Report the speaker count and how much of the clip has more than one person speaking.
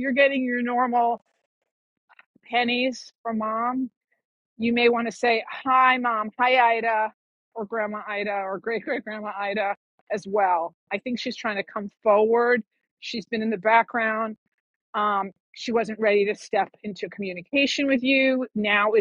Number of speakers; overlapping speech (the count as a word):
one, no overlap